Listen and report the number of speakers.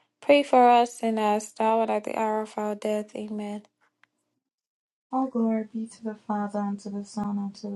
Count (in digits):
2